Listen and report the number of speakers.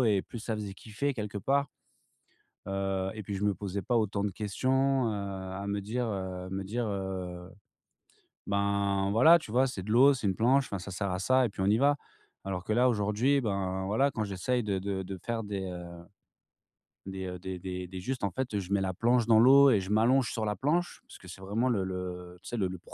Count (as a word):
one